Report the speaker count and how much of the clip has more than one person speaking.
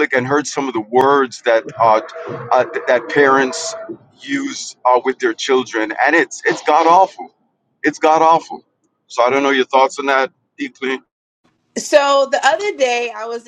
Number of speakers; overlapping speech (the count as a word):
two, no overlap